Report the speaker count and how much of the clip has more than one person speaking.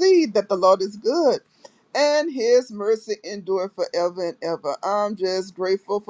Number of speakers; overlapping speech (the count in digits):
1, no overlap